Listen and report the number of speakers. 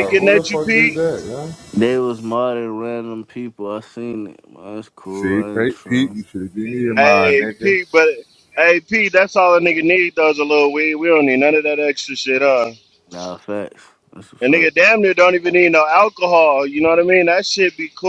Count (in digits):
3